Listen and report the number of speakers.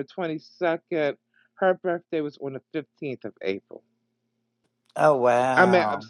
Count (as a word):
two